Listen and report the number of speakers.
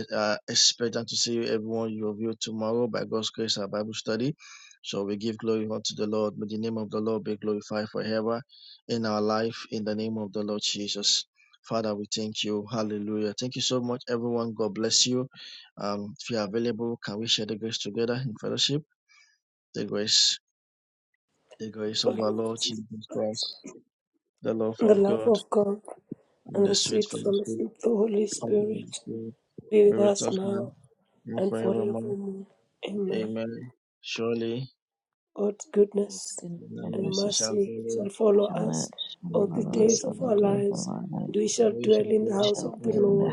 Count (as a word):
three